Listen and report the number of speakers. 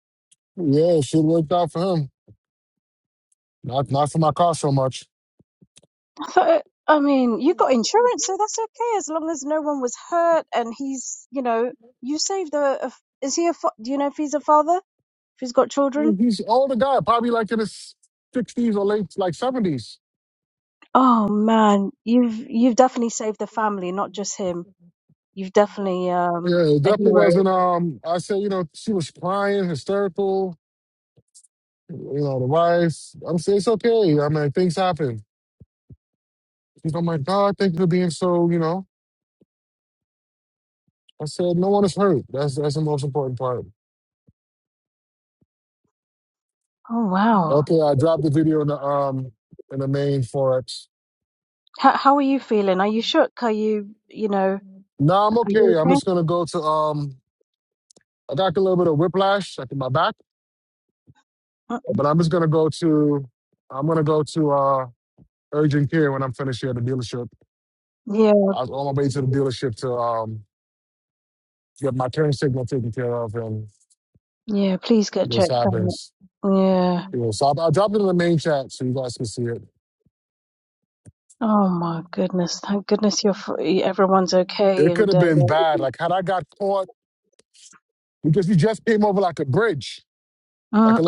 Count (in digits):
2